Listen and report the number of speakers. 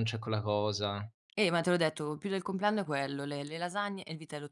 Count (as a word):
two